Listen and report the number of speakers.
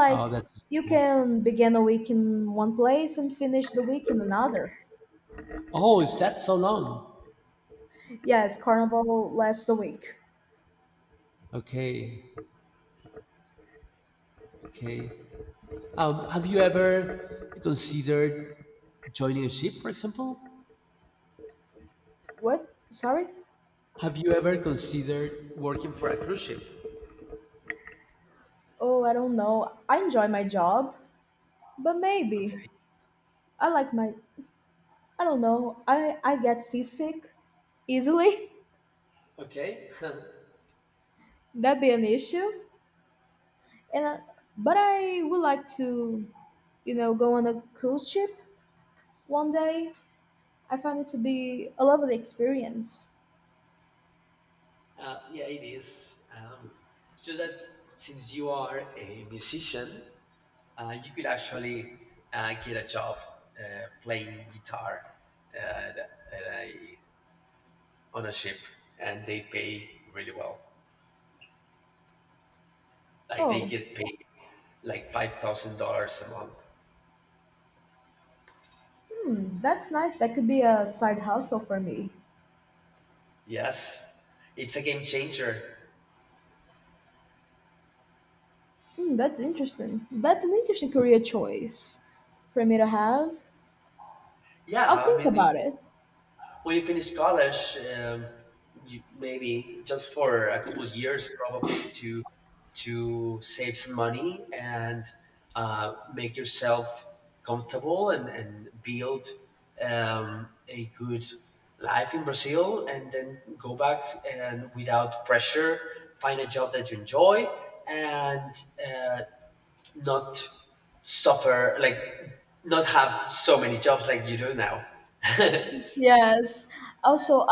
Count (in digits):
2